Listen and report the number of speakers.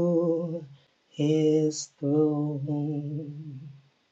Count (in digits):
1